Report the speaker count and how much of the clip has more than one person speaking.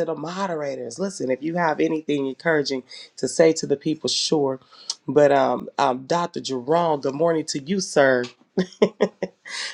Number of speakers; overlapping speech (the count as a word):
one, no overlap